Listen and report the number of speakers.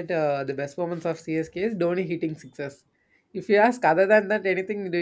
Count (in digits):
1